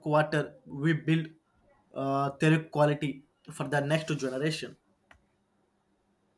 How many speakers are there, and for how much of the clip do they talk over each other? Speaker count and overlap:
one, no overlap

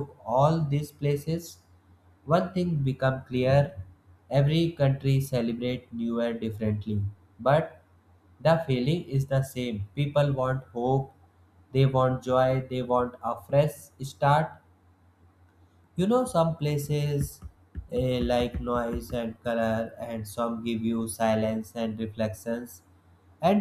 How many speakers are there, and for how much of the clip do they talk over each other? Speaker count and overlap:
one, no overlap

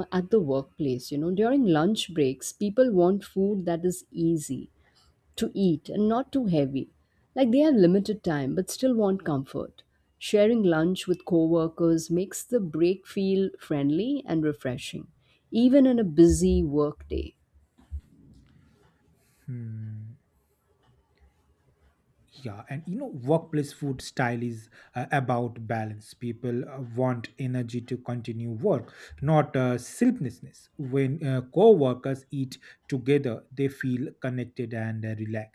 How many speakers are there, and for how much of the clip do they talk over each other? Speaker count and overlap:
two, no overlap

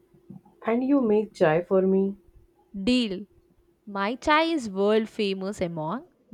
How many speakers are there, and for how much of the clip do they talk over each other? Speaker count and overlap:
two, no overlap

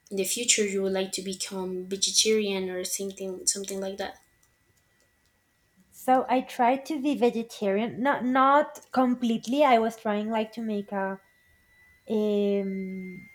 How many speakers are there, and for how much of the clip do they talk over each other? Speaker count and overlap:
two, no overlap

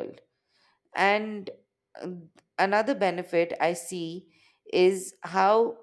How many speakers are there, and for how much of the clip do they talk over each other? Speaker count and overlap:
one, no overlap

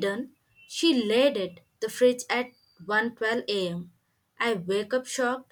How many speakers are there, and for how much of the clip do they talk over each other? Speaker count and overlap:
one, no overlap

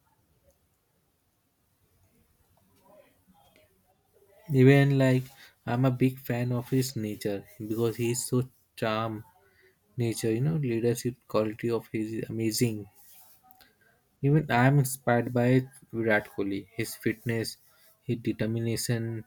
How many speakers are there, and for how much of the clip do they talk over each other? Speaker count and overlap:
one, no overlap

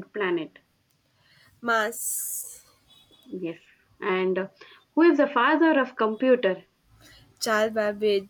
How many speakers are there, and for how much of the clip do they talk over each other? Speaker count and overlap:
two, no overlap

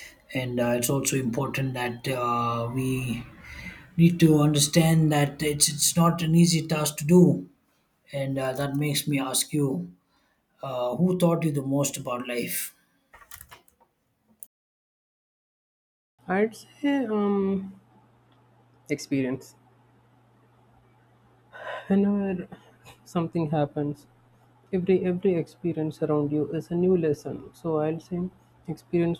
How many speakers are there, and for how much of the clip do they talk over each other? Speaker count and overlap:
two, no overlap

